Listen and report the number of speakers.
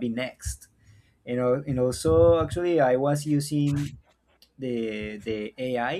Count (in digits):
1